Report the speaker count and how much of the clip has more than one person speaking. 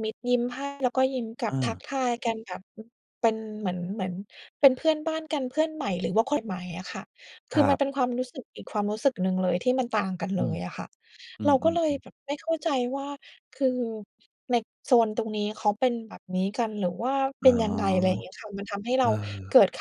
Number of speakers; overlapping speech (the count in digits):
2, about 5%